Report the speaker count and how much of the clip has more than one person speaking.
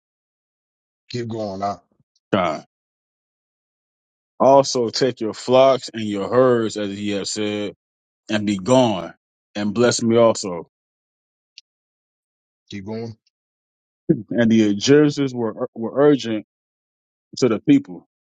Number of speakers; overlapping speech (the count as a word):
two, no overlap